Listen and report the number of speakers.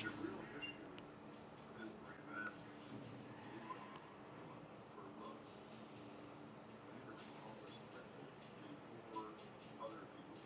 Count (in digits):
0